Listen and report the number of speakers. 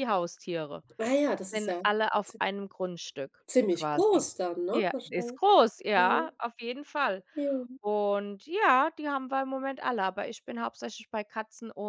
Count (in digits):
2